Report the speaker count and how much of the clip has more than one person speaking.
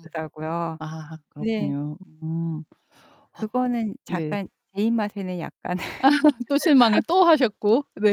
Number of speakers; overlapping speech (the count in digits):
2, about 7%